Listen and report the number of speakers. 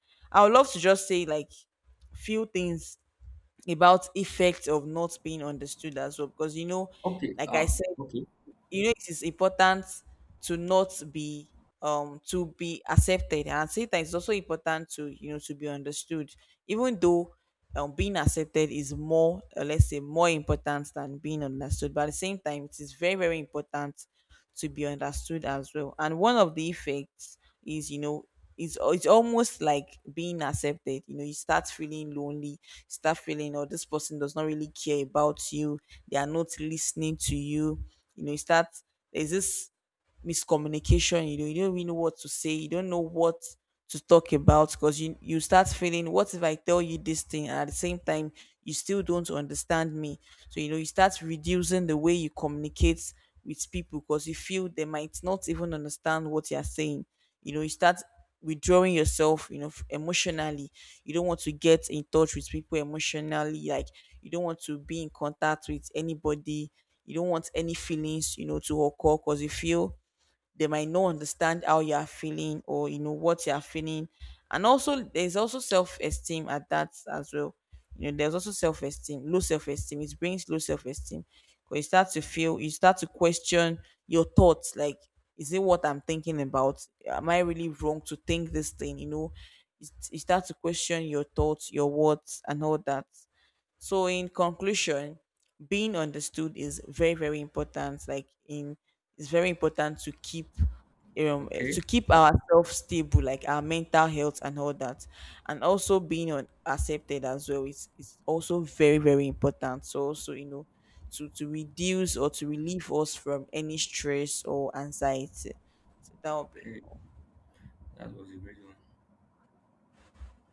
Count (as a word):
two